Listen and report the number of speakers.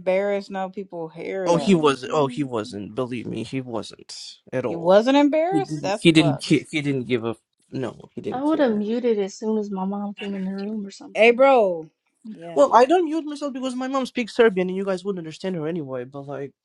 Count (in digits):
3